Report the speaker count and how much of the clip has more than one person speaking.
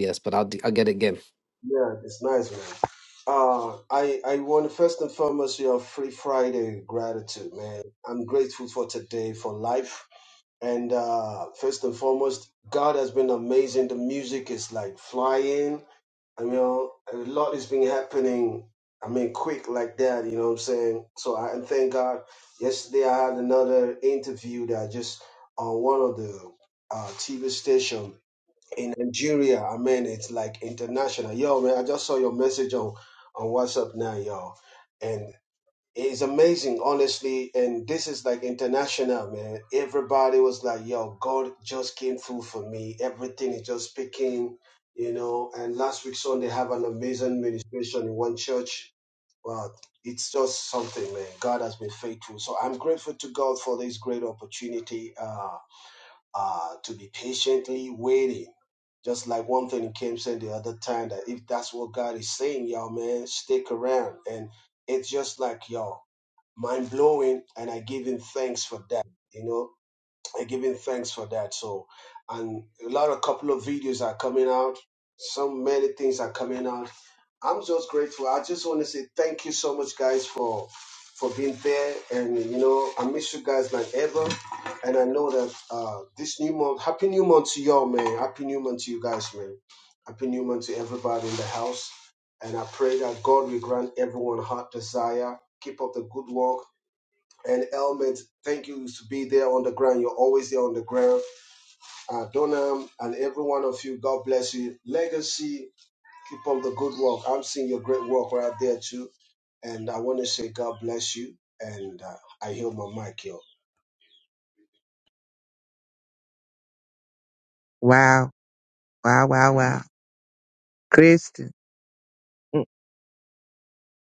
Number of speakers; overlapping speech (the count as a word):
three, no overlap